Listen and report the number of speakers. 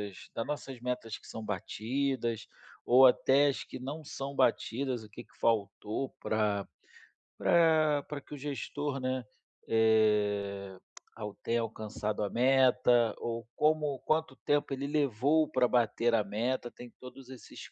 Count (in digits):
1